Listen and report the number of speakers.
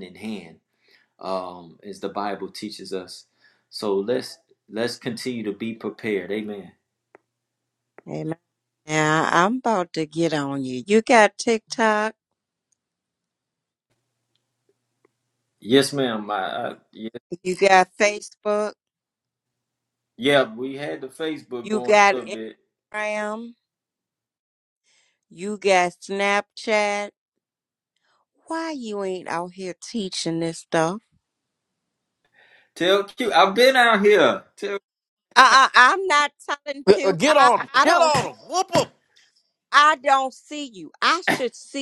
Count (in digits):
3